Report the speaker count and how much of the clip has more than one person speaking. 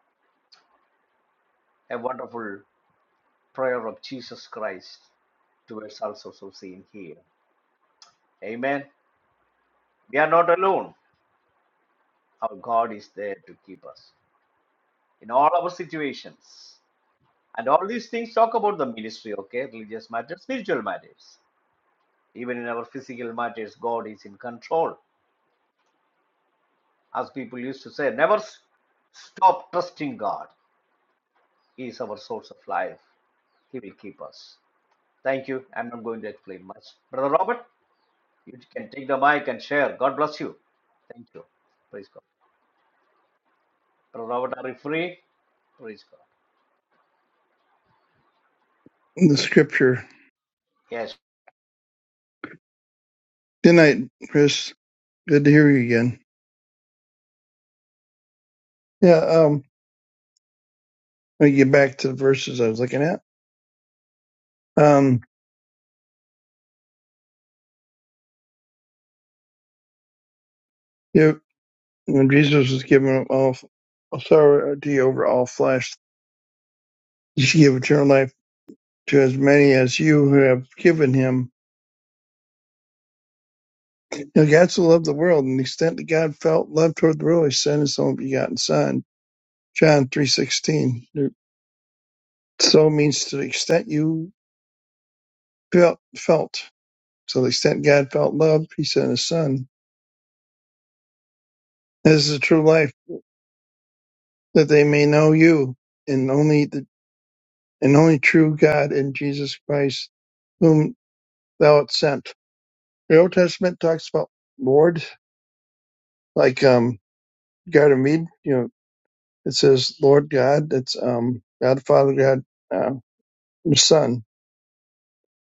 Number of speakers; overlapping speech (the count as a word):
two, no overlap